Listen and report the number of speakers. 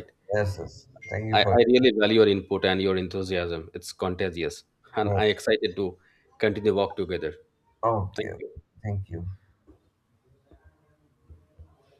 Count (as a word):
two